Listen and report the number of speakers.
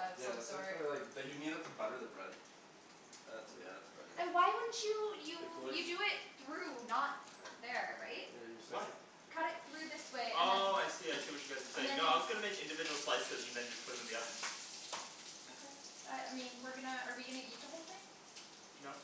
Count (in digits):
3